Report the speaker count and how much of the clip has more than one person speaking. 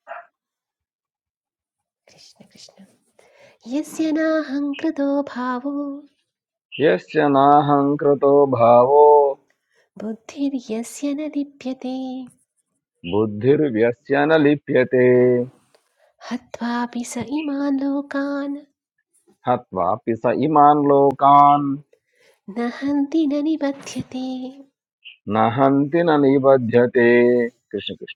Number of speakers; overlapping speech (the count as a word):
two, no overlap